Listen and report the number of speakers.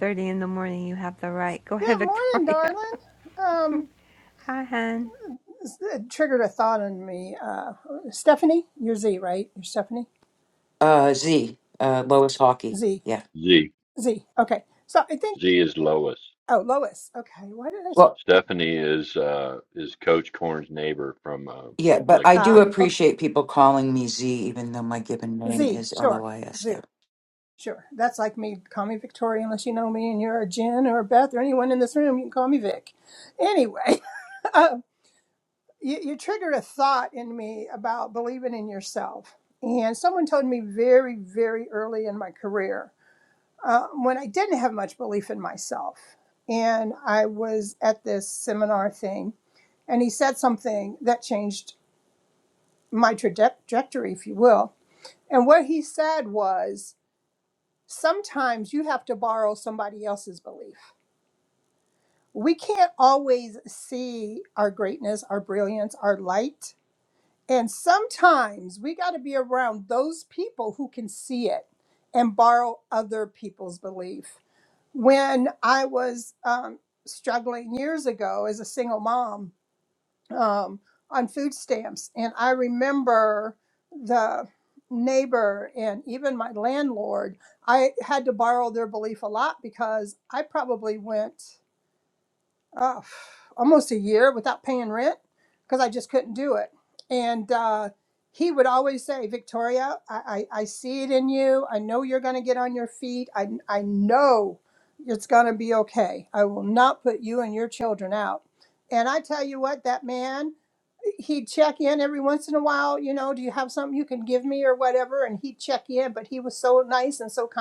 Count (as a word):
four